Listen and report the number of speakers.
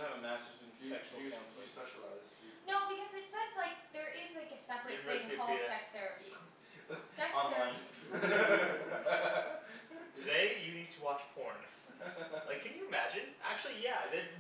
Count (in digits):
4